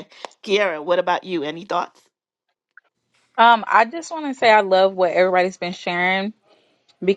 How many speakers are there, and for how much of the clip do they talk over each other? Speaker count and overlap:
two, no overlap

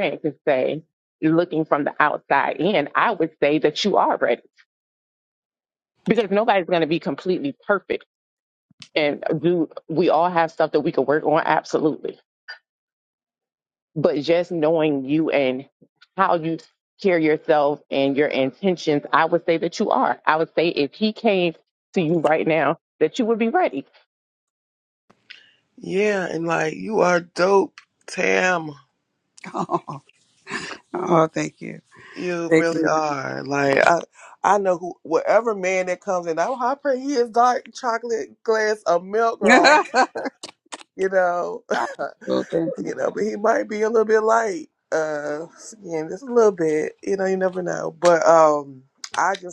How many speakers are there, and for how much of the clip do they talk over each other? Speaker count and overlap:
three, about 2%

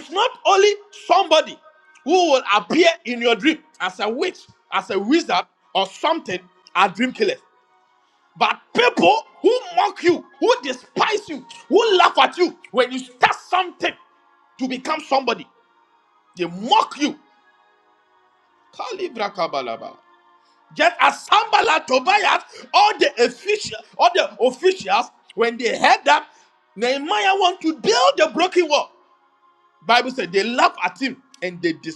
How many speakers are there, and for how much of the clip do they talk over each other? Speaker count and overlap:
one, no overlap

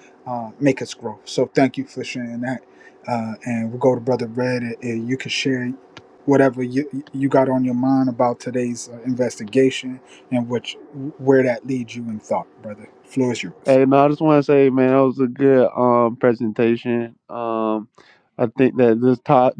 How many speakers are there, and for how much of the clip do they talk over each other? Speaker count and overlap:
two, under 1%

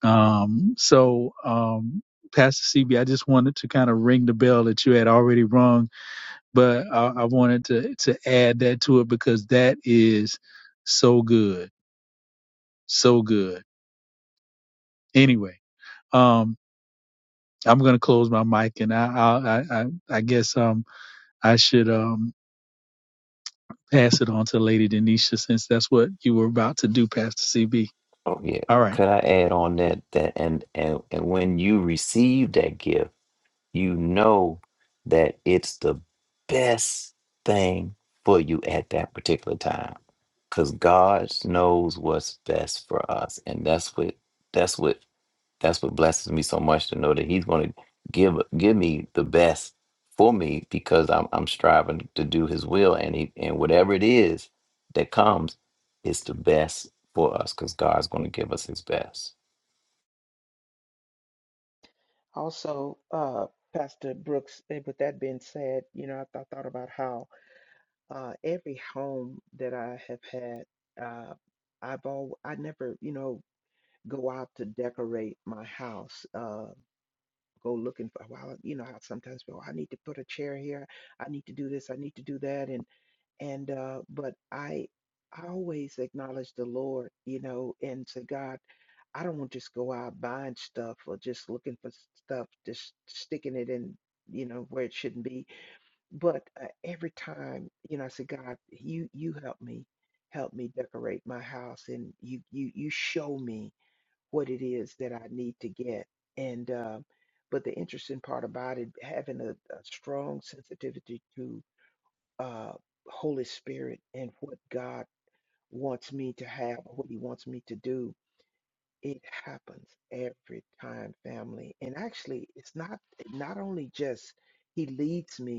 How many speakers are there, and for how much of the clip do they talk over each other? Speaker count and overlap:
three, under 1%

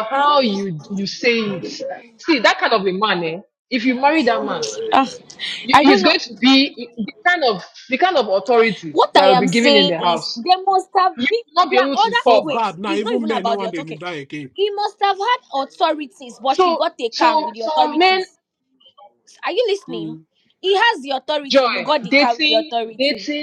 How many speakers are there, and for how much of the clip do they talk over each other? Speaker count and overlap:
three, about 30%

